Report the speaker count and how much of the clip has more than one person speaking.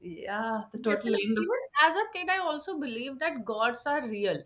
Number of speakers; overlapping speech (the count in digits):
2, about 16%